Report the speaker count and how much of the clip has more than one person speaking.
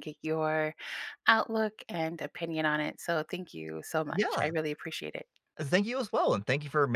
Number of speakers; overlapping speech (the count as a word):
two, about 5%